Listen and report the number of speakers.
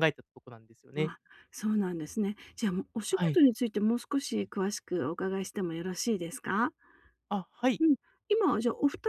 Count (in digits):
2